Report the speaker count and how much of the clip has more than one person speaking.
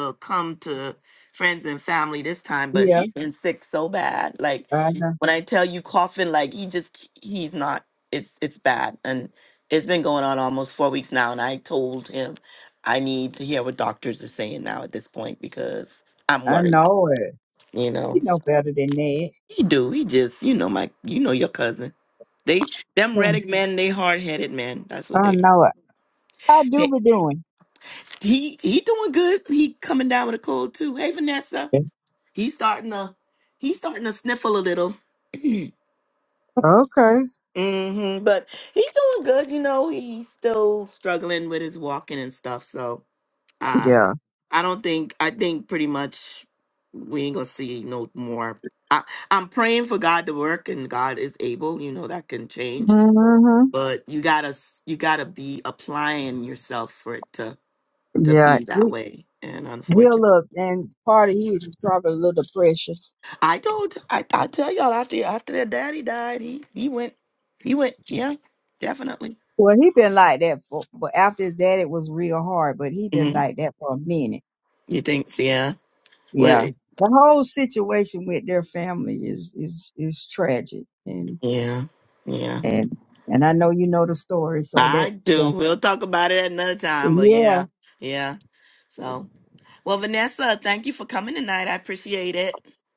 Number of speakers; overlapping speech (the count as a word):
two, about 5%